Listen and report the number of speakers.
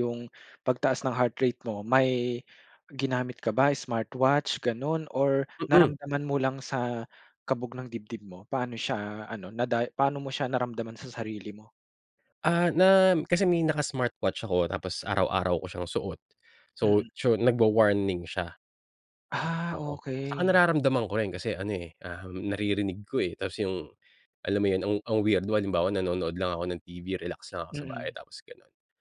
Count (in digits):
2